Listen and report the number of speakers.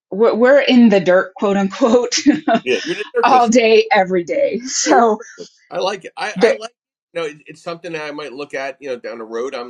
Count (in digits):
2